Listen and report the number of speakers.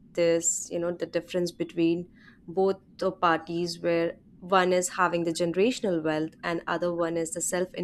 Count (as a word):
one